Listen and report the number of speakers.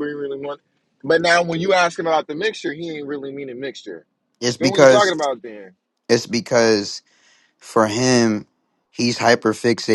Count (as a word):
two